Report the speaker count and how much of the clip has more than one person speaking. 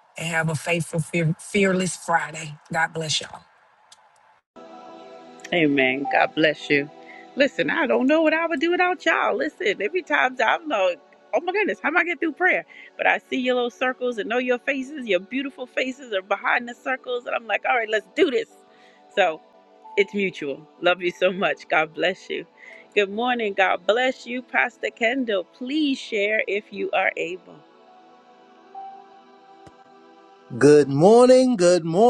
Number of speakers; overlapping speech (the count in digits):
3, no overlap